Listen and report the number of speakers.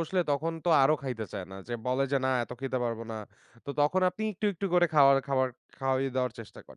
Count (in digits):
1